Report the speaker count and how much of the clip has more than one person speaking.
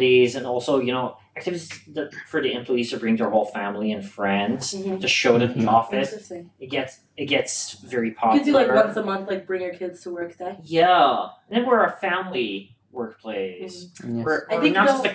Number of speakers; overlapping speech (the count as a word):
two, about 13%